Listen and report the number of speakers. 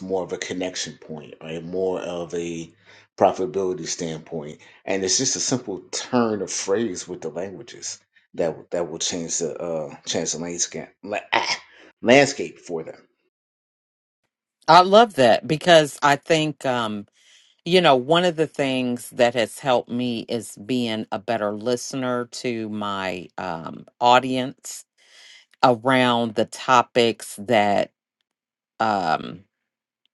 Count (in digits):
2